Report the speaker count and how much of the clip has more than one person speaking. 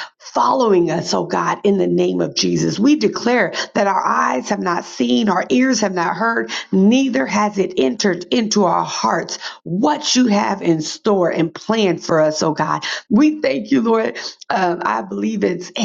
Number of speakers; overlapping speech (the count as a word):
one, no overlap